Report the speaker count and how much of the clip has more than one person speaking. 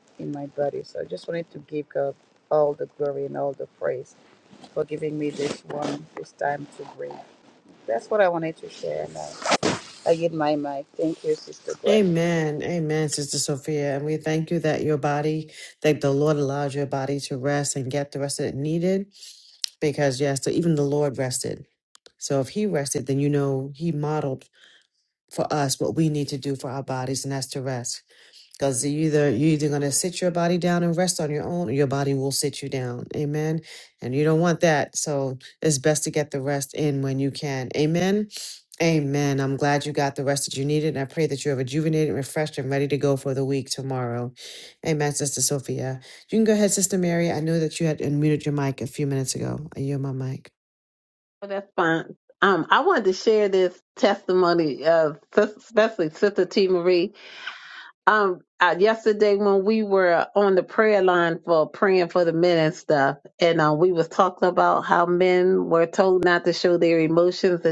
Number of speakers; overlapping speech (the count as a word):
three, under 1%